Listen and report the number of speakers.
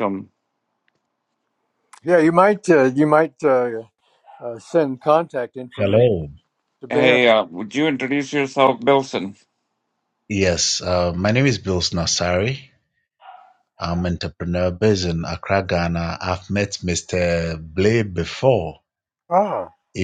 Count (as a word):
three